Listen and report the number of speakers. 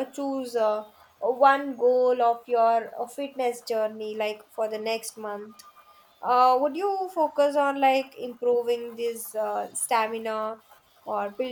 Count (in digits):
1